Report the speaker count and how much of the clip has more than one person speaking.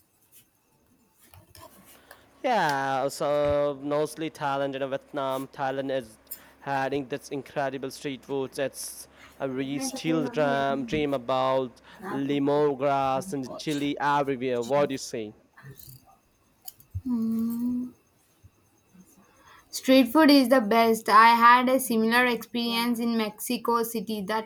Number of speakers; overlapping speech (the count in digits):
2, no overlap